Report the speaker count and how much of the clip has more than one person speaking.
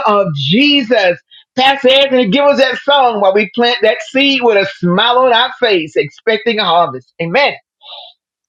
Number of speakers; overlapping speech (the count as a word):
one, no overlap